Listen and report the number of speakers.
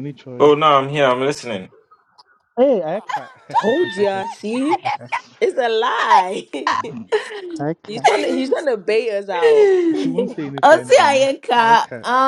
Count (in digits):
4